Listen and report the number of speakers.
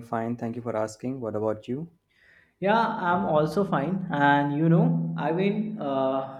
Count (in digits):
2